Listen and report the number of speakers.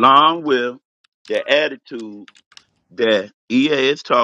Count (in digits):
1